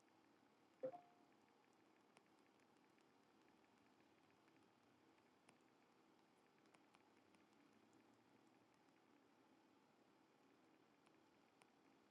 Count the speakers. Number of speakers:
zero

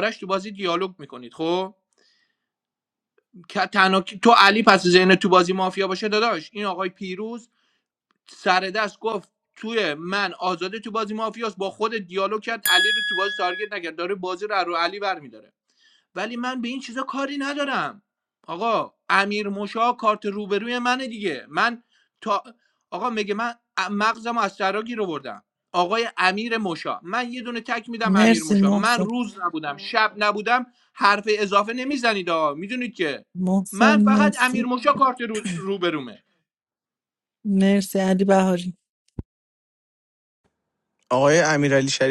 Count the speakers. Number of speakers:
three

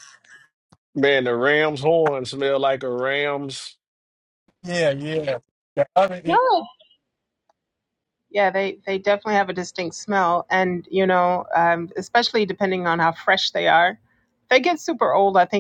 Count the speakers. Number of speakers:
three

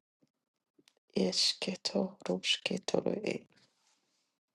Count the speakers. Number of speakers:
one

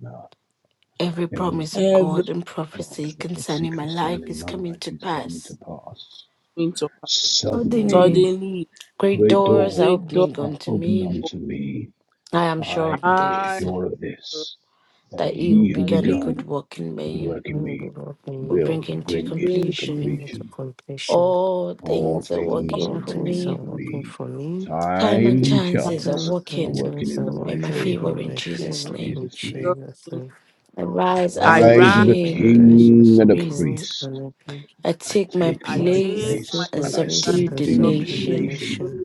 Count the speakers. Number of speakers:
four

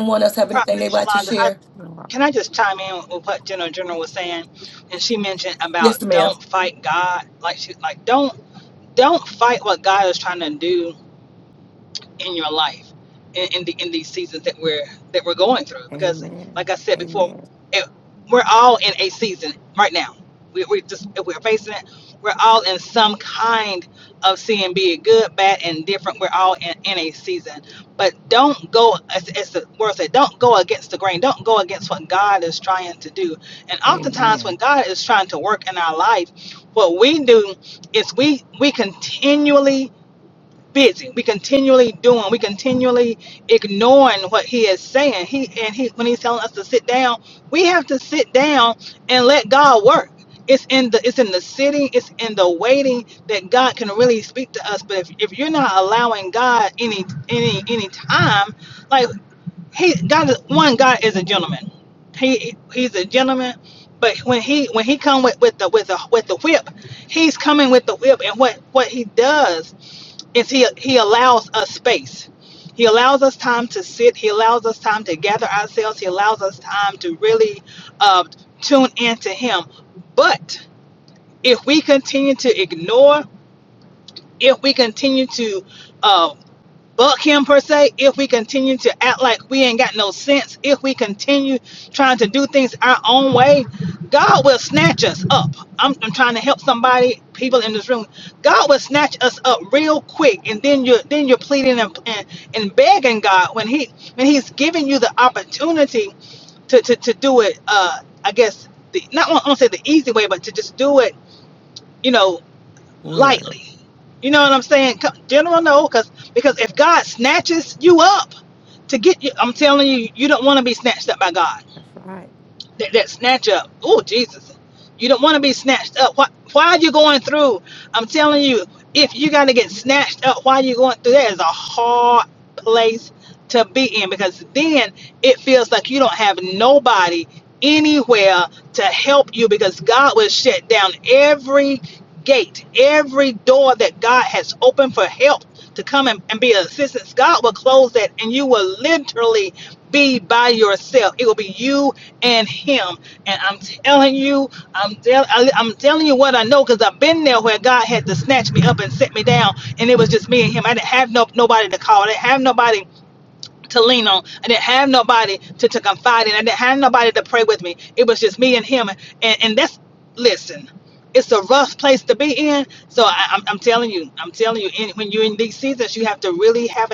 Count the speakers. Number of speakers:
three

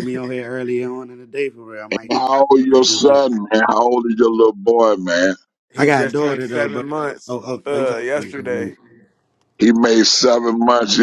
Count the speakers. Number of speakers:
three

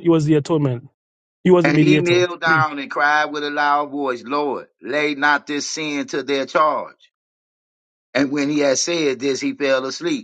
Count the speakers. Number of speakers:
two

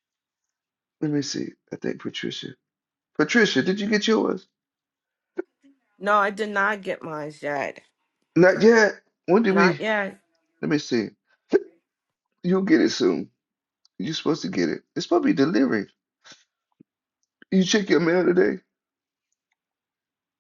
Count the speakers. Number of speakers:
two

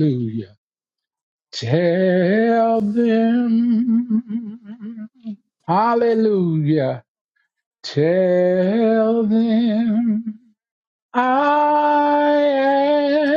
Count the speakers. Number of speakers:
one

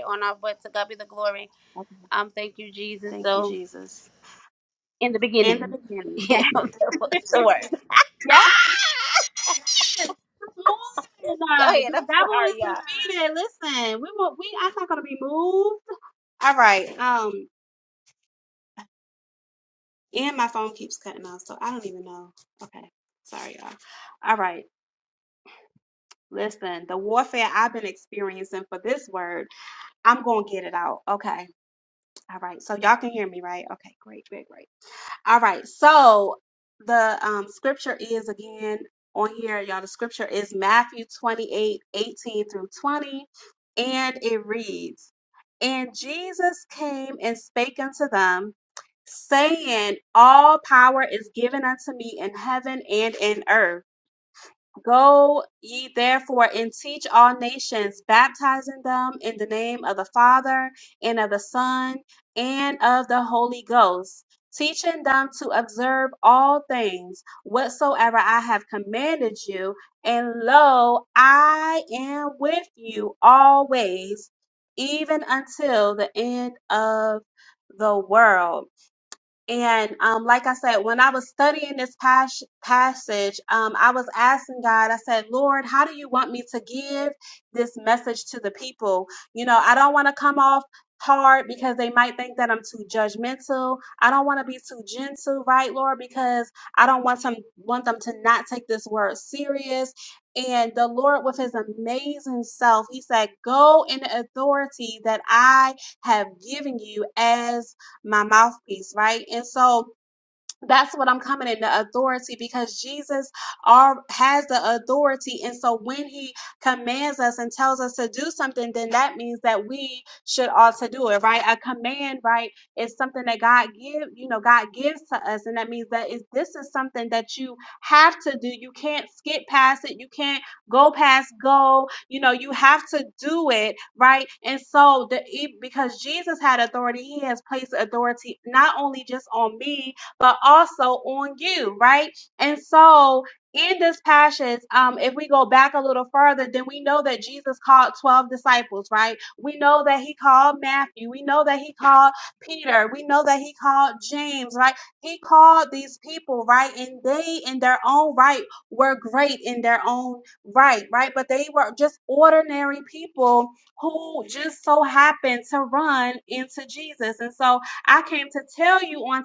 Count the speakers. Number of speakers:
two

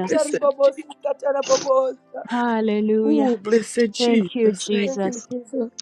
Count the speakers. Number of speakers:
three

